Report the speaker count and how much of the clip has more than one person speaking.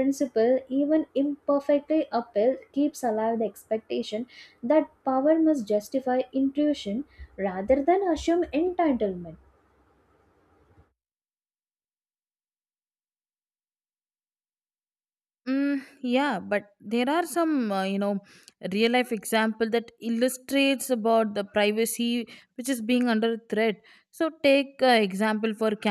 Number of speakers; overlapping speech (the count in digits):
2, no overlap